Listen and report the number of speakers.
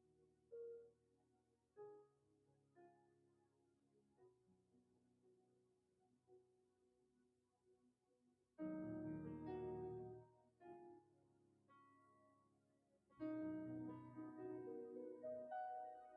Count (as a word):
zero